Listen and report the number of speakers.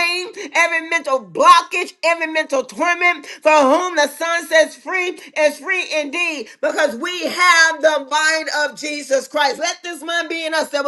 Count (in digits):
1